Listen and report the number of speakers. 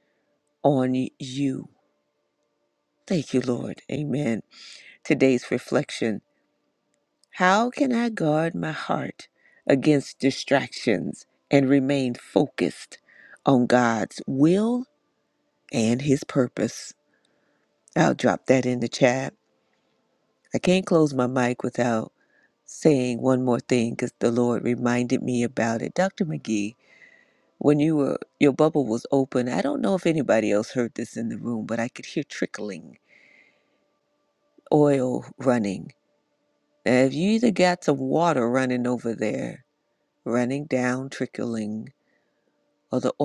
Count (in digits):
1